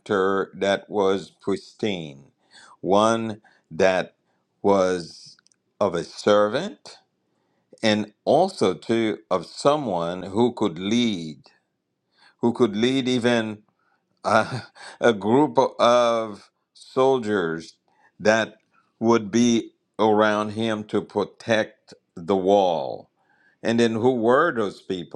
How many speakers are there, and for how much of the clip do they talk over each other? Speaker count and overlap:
1, no overlap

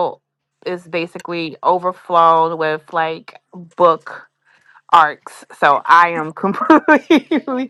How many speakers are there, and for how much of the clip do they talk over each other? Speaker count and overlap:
1, no overlap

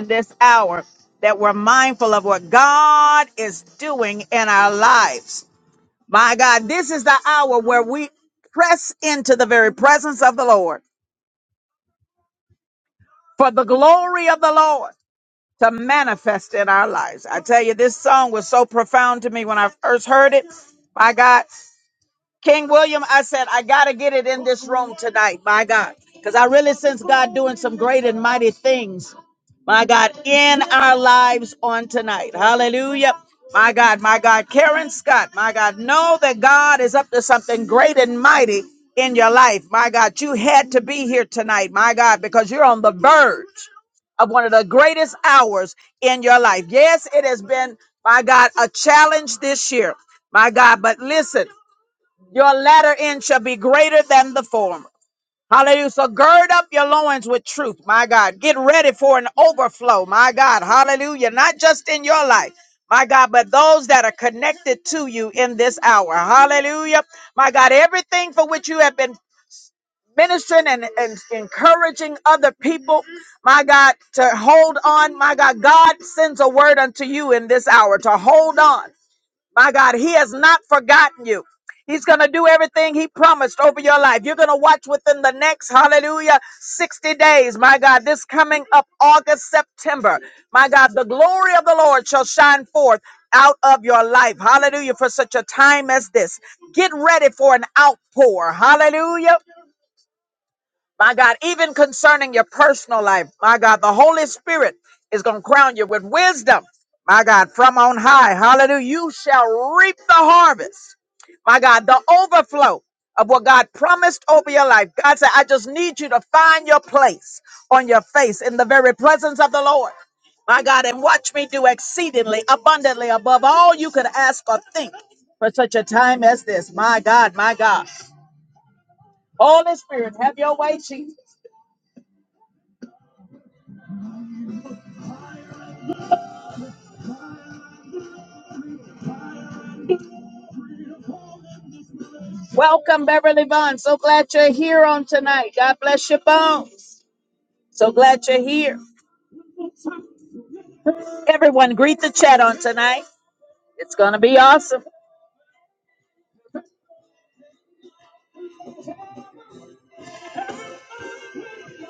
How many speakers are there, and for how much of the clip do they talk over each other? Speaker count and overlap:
1, no overlap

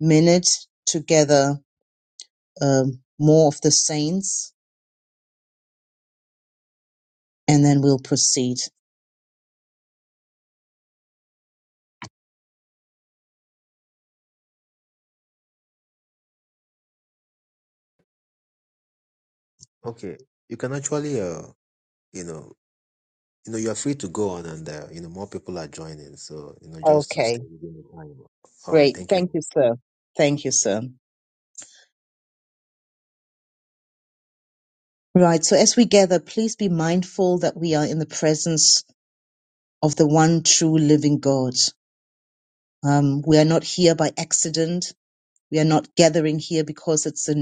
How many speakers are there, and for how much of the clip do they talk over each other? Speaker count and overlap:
2, about 3%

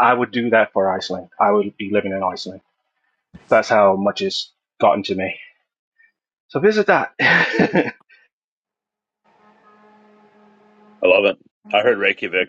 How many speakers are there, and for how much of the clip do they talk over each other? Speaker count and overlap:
2, no overlap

